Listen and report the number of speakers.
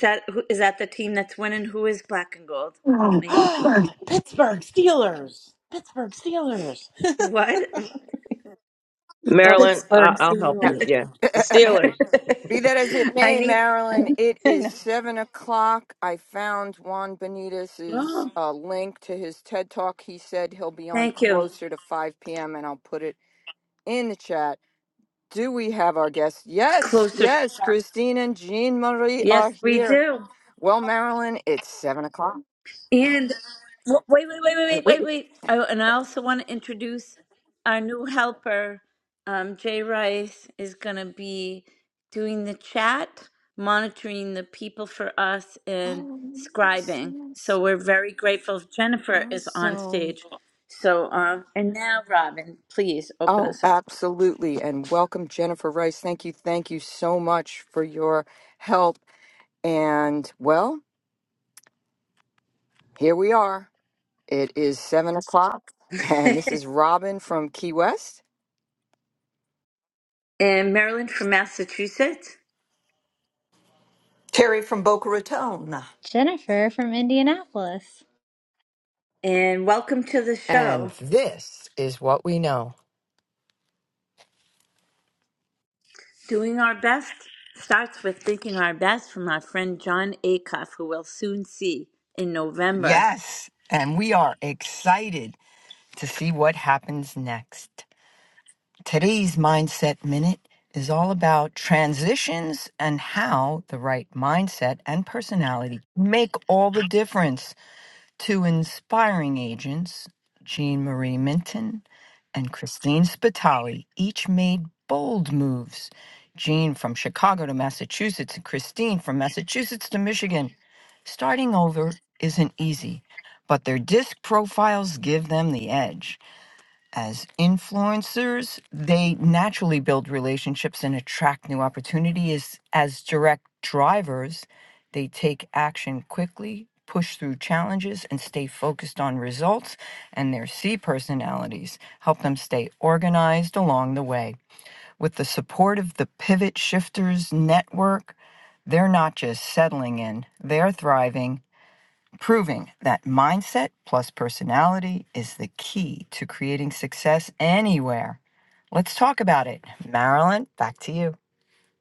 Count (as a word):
six